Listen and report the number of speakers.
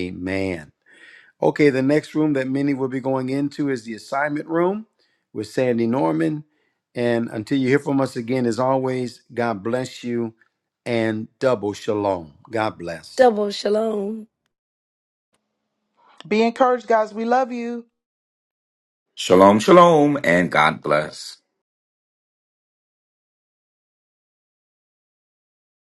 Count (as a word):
four